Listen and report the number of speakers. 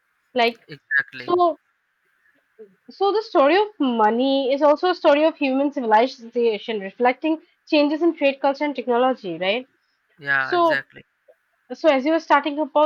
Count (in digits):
2